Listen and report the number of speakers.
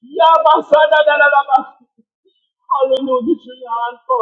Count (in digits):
1